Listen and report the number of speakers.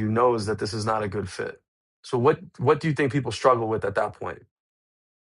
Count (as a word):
one